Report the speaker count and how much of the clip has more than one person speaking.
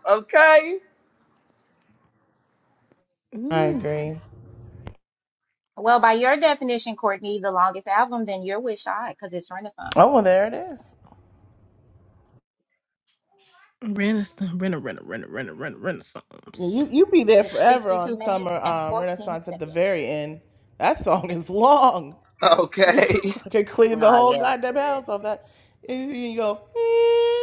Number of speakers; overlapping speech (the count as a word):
four, about 16%